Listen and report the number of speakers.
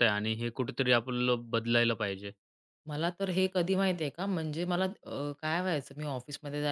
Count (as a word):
two